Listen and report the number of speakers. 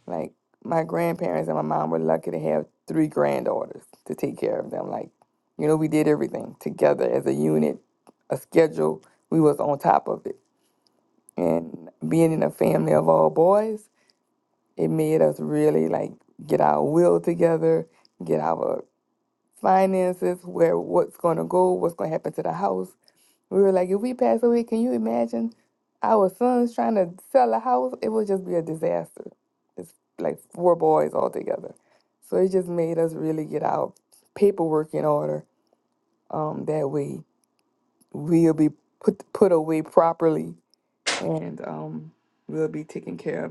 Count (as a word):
one